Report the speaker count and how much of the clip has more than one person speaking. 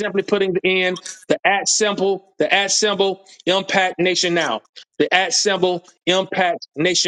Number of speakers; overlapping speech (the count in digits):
1, no overlap